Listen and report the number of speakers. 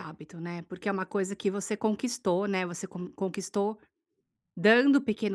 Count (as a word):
one